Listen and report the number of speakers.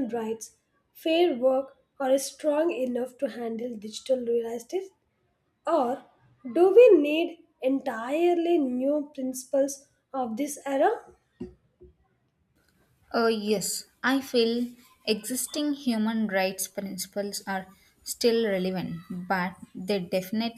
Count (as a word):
two